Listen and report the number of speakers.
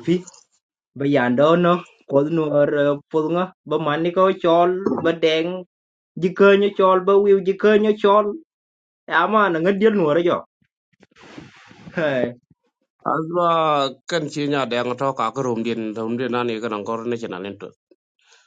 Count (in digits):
2